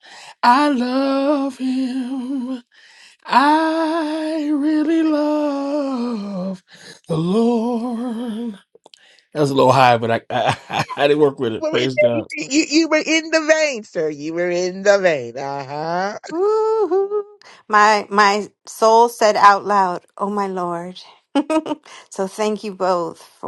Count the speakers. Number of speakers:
3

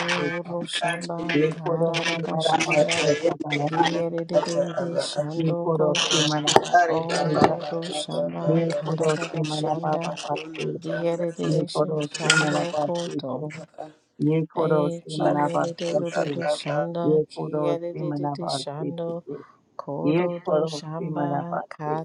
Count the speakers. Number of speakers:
3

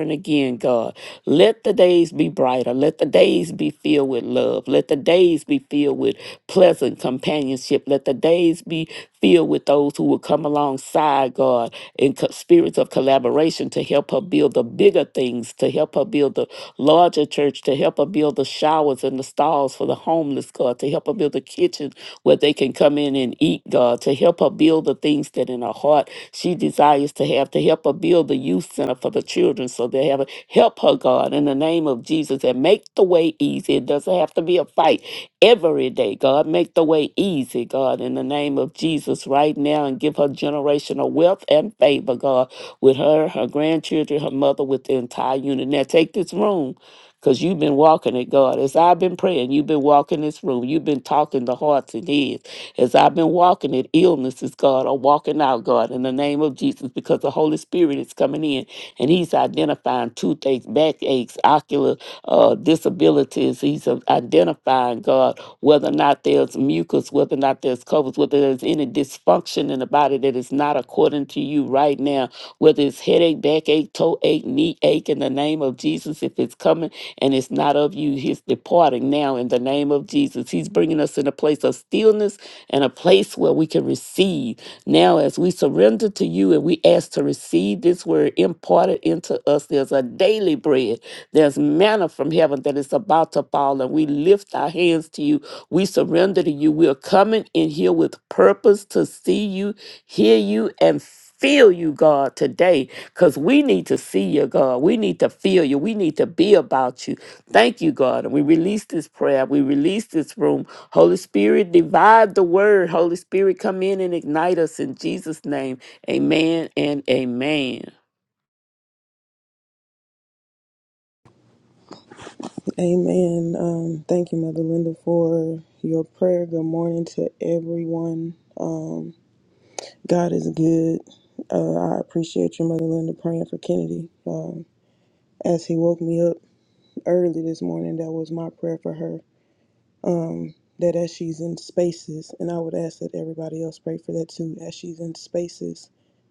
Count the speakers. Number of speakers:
2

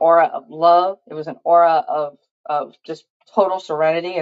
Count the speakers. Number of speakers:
1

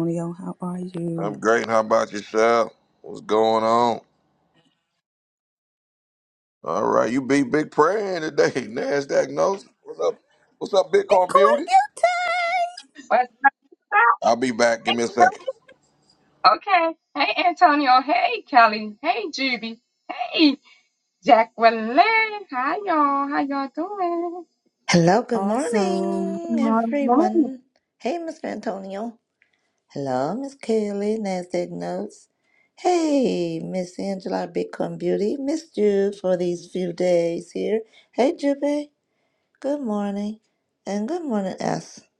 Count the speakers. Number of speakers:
4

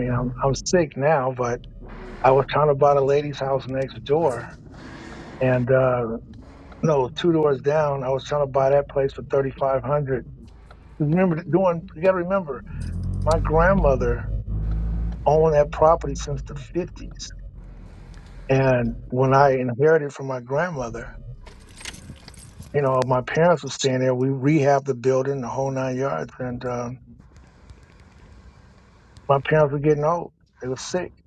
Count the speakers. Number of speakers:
1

